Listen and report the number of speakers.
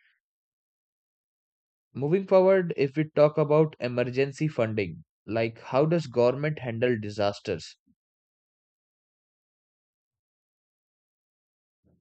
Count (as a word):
one